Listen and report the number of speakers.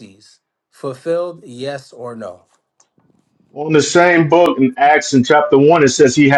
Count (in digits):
2